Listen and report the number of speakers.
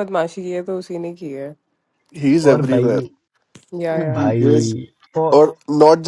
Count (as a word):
three